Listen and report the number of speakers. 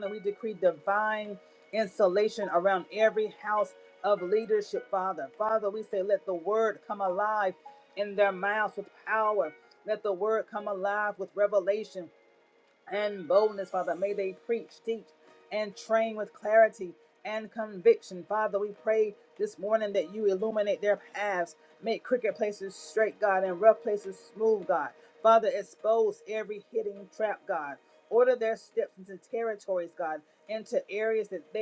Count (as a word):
one